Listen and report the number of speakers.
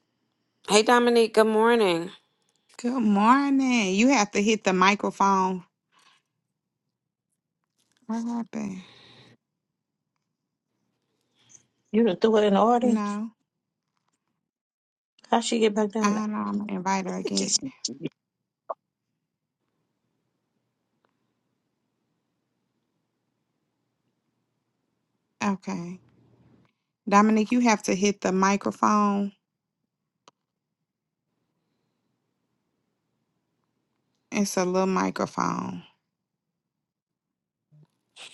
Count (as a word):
three